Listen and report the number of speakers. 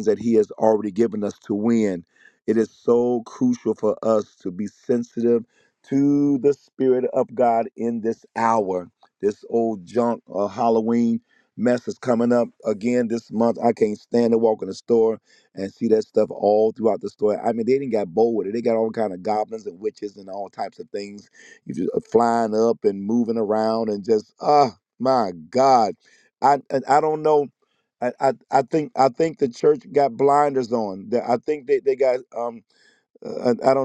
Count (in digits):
1